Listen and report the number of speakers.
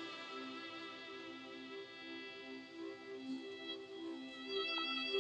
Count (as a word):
zero